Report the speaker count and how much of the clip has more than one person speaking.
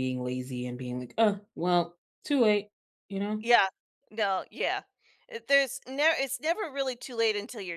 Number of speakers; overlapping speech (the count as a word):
two, no overlap